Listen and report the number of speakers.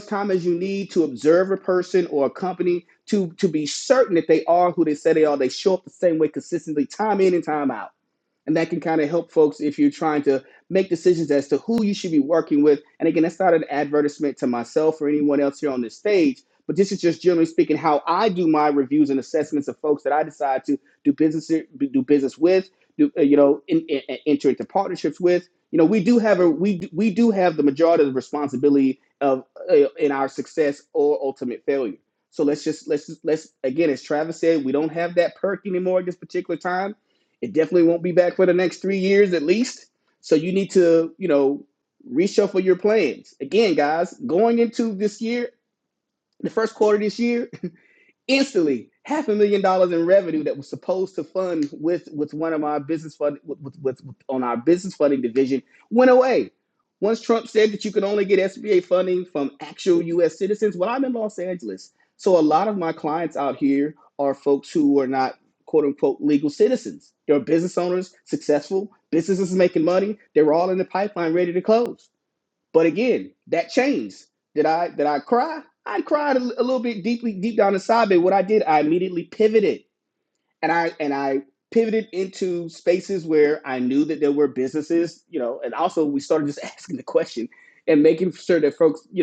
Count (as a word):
one